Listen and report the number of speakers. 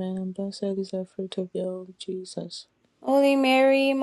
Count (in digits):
2